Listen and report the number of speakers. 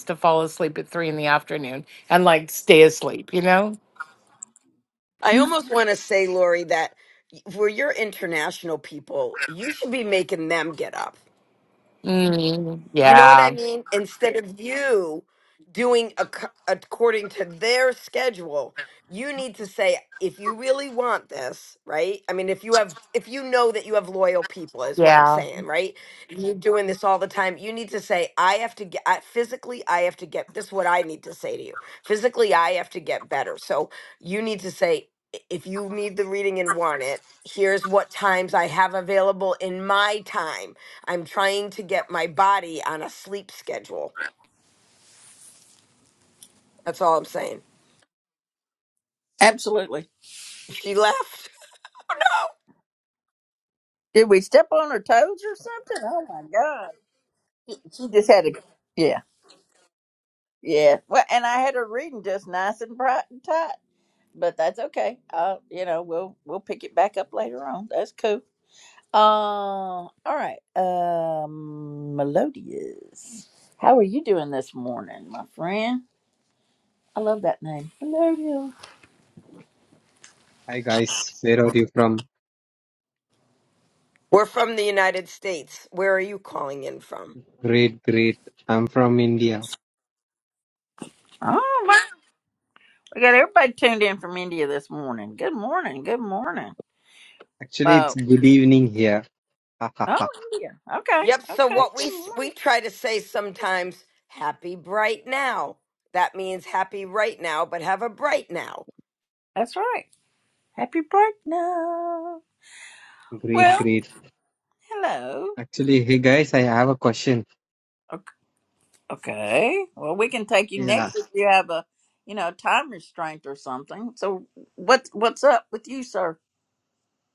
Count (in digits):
4